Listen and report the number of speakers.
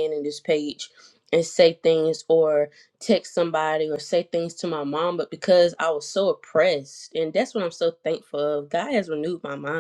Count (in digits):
1